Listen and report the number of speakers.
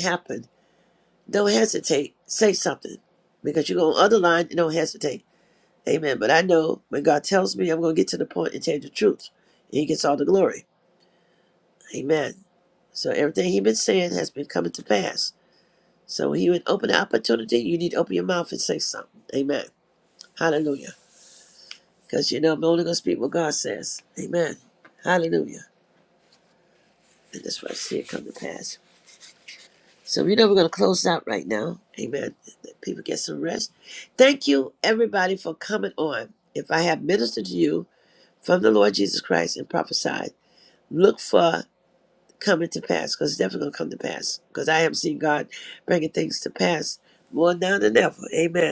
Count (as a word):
one